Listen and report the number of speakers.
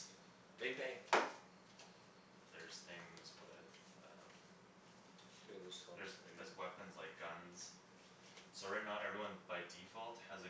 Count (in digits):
2